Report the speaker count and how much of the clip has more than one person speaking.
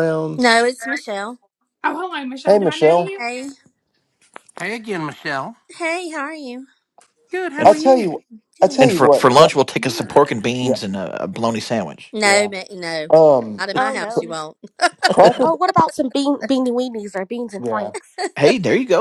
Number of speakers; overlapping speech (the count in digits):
6, about 23%